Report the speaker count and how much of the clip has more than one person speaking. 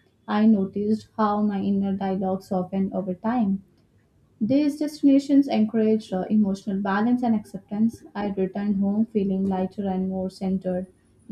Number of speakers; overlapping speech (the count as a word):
one, no overlap